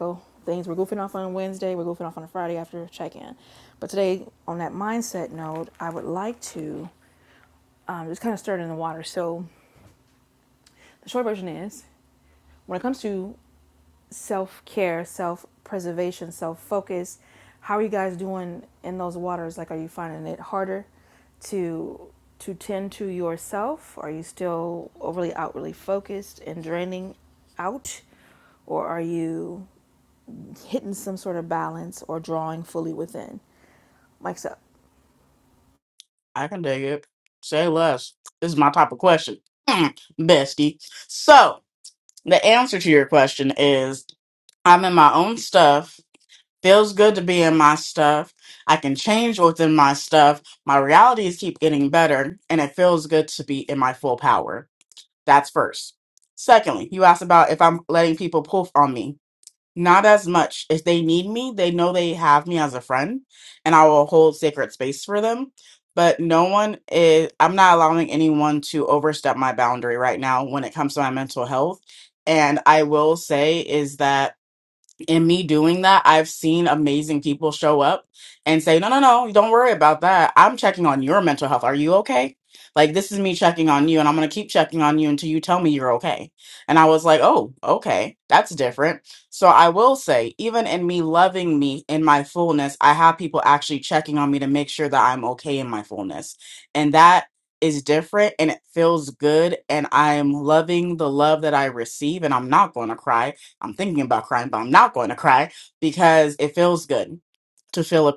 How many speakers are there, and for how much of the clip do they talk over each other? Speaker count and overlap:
2, no overlap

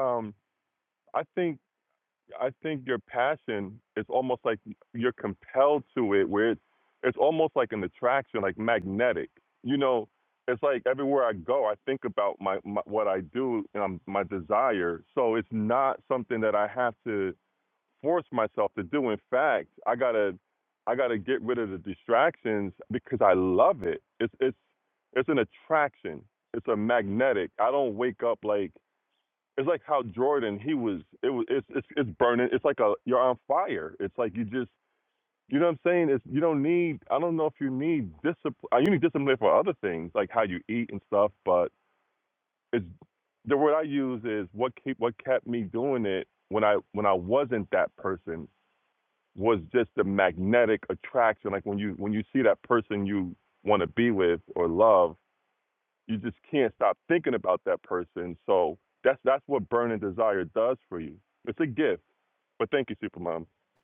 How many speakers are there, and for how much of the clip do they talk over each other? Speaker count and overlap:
1, no overlap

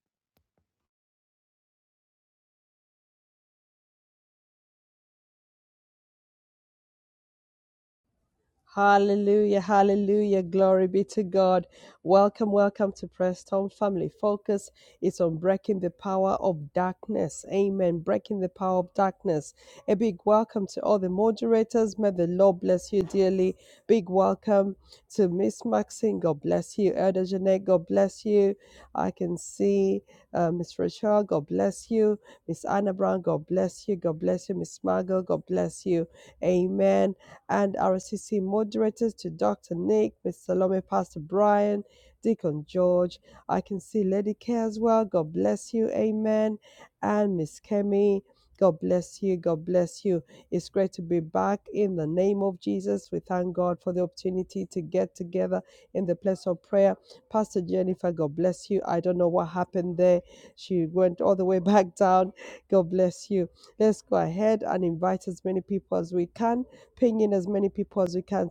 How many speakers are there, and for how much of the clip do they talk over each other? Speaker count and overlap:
1, no overlap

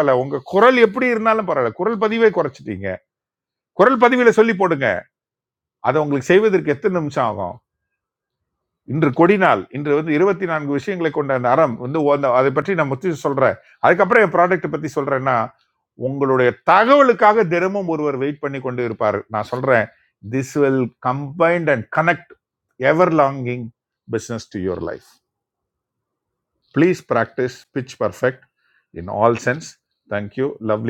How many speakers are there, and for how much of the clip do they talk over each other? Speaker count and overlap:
1, no overlap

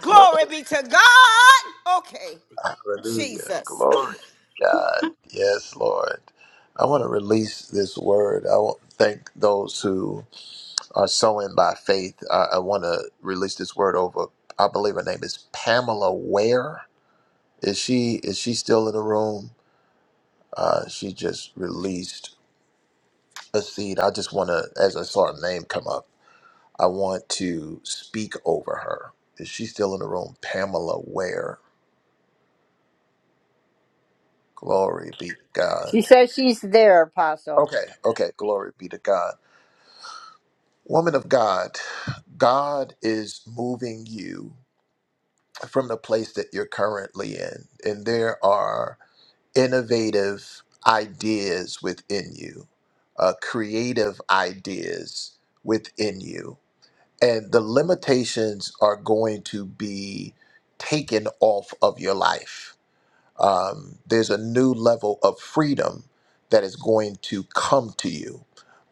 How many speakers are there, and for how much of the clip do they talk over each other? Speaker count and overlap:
3, about 1%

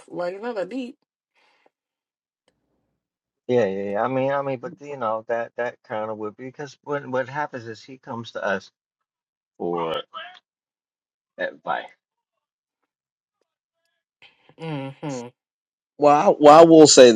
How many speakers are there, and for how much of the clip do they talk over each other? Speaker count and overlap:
3, no overlap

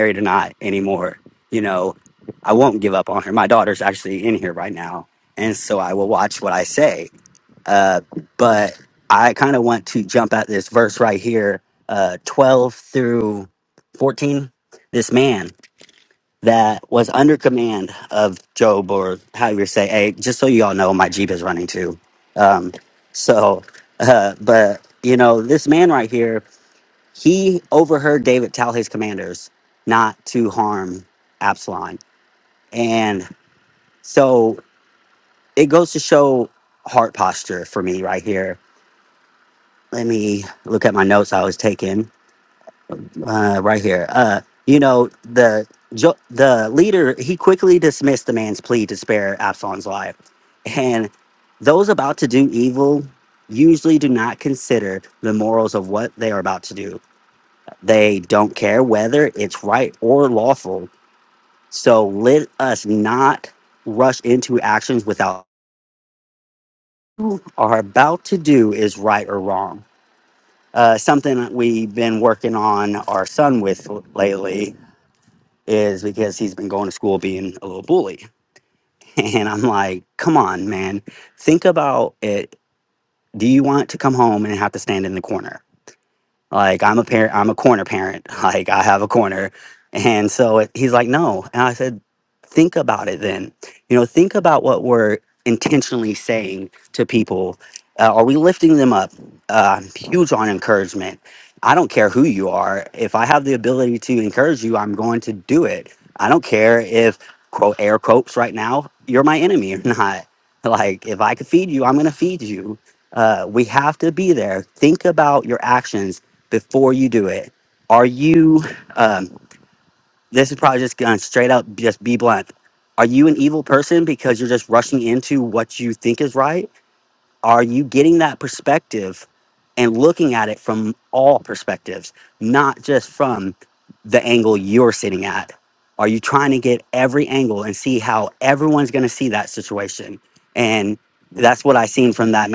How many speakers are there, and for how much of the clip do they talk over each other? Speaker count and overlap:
1, no overlap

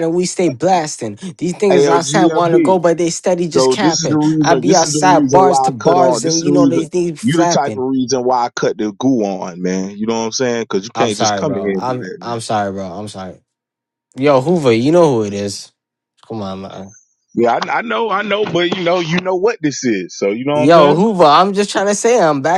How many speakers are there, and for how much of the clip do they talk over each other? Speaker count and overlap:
2, about 30%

